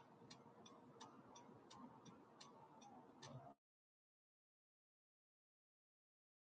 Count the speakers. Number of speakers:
zero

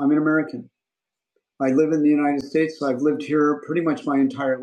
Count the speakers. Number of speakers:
one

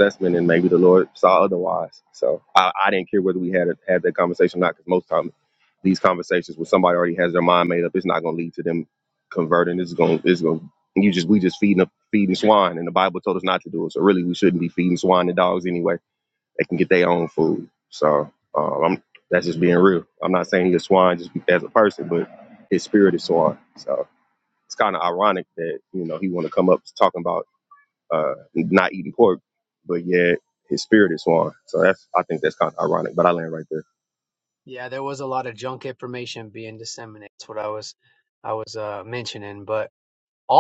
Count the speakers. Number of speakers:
two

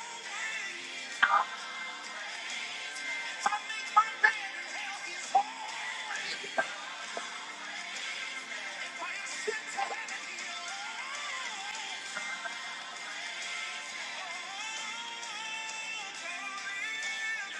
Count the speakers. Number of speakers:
zero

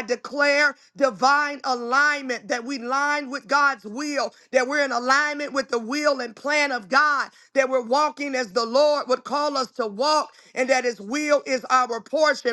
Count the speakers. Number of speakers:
one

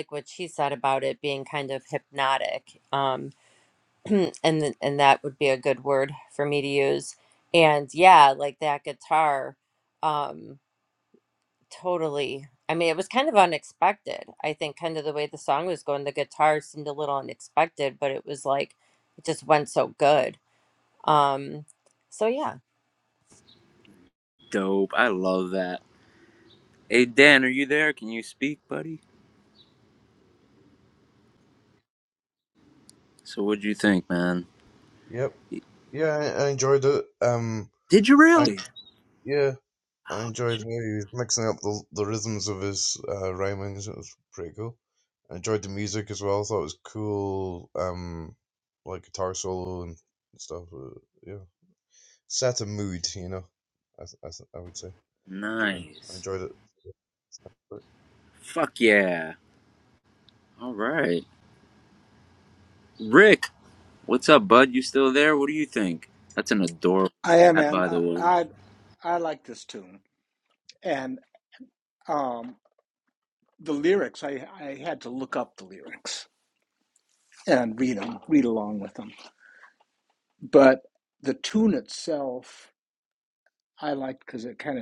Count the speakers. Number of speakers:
four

